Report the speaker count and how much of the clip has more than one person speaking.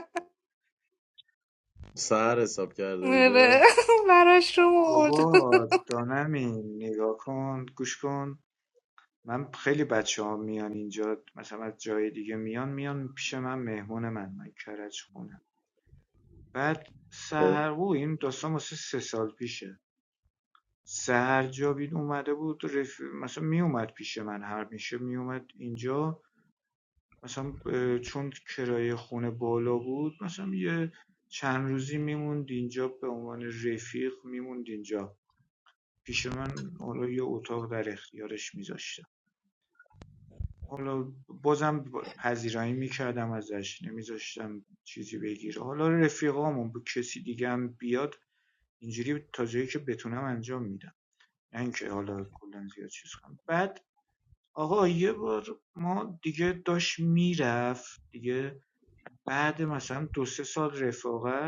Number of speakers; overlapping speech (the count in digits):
3, about 3%